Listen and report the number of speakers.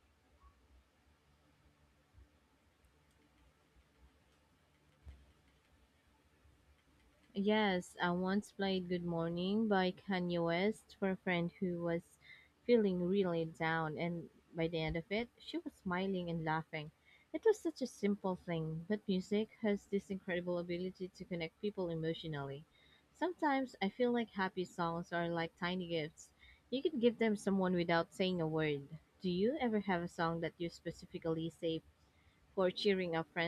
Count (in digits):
1